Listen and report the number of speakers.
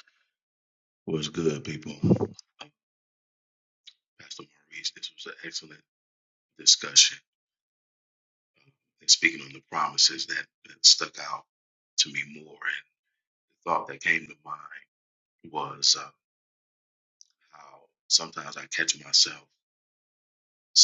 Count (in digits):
1